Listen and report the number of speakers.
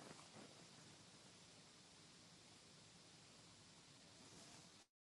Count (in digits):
0